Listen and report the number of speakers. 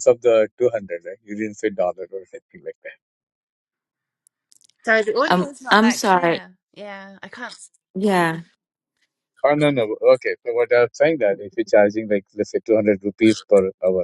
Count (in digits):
3